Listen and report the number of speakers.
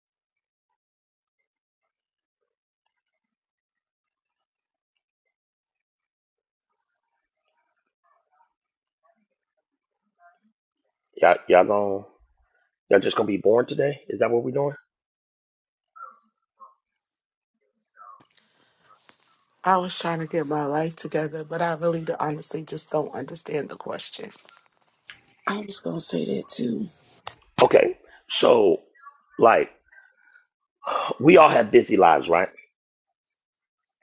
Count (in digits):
3